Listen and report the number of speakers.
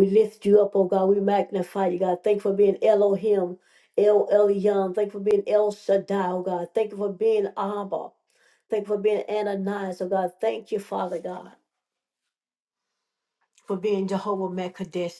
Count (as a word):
one